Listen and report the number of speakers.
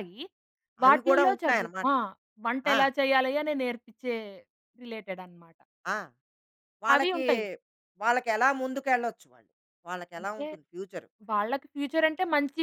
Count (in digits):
2